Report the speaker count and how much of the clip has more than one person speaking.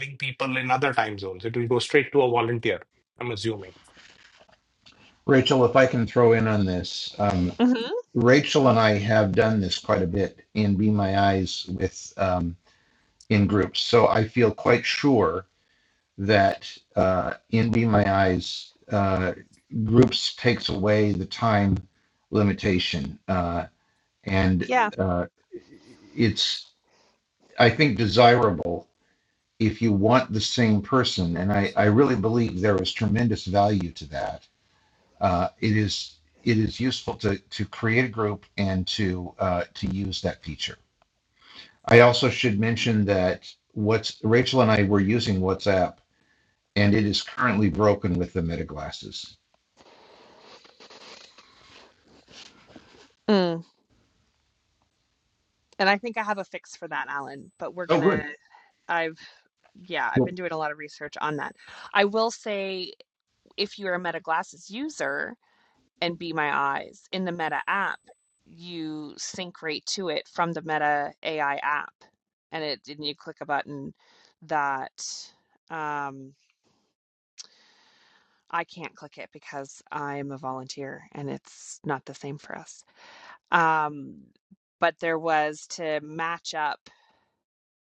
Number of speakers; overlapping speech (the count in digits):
3, about 1%